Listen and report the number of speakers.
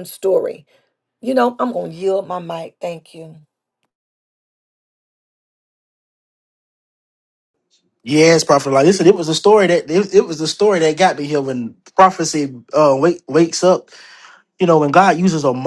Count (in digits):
2